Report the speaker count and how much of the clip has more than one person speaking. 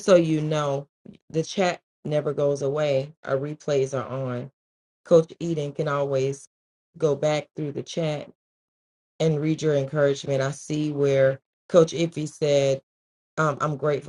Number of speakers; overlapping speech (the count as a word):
one, no overlap